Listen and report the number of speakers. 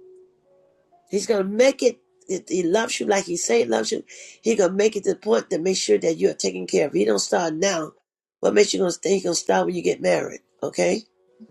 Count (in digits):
1